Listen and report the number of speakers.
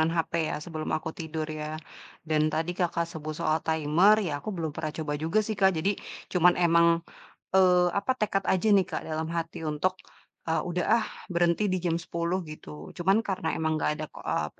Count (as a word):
one